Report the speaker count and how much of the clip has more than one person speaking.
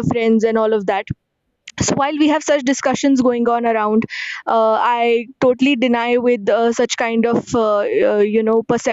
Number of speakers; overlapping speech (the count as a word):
one, no overlap